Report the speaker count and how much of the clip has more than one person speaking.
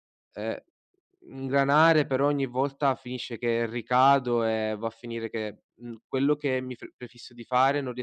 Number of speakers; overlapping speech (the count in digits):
1, no overlap